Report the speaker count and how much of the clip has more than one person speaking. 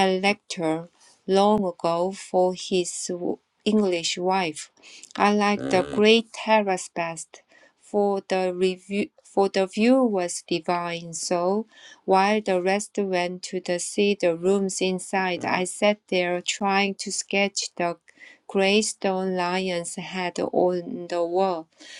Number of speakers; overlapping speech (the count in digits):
1, no overlap